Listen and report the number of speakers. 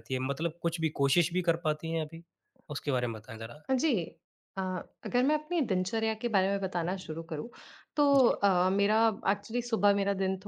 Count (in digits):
2